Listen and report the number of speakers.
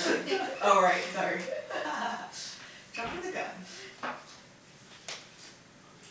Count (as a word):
one